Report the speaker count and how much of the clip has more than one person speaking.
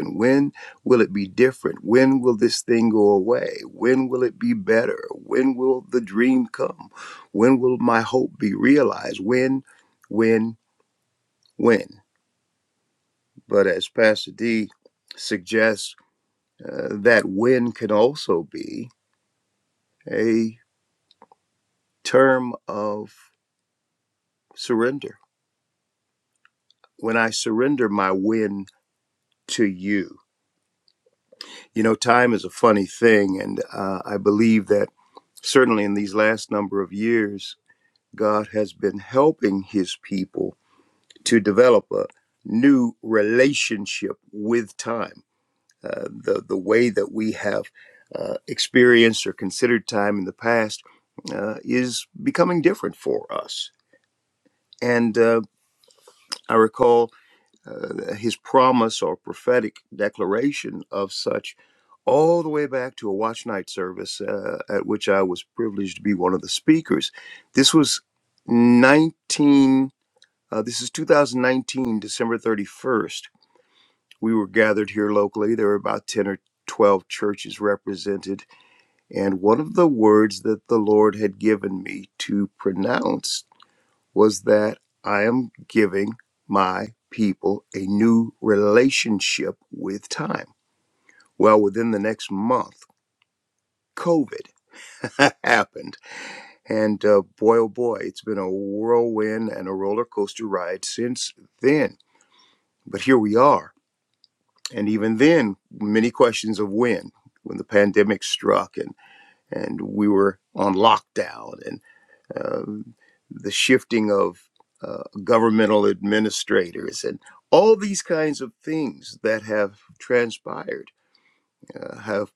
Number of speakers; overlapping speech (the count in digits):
1, no overlap